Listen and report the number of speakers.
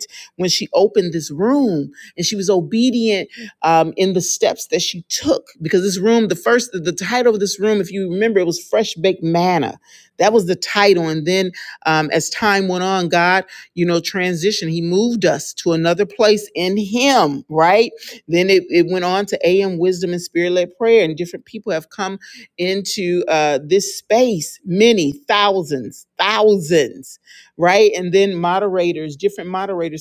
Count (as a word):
one